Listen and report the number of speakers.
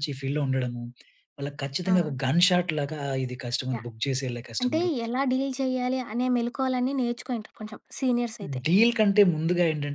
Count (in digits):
2